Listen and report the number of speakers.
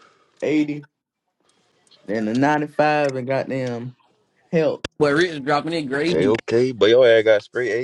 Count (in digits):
3